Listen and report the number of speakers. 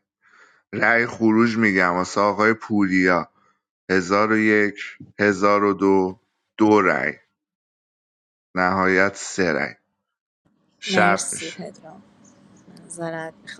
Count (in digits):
2